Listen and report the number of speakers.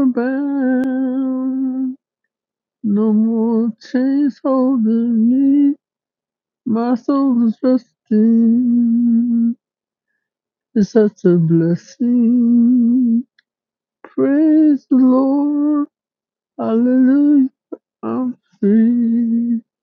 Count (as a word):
one